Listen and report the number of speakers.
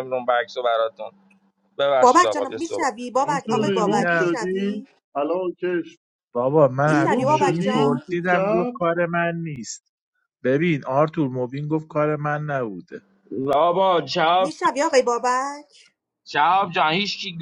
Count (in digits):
4